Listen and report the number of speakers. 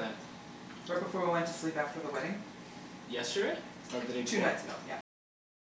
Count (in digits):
2